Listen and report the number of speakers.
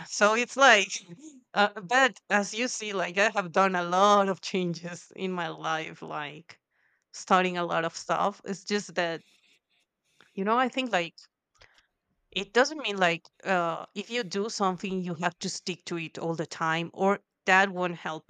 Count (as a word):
one